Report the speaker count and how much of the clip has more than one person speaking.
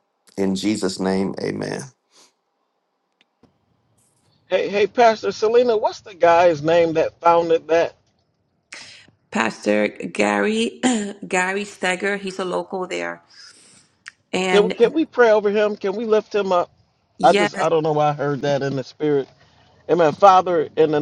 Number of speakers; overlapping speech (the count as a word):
three, about 4%